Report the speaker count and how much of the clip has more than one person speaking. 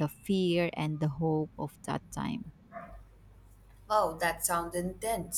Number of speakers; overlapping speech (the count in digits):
2, no overlap